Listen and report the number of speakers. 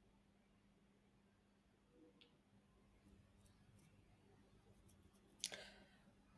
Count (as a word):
zero